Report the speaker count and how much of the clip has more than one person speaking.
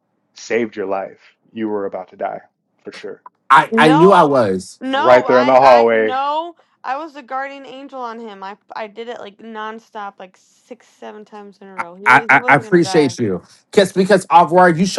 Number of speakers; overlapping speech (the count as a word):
three, about 20%